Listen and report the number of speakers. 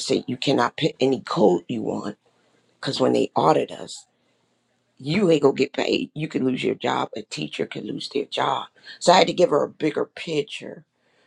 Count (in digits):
1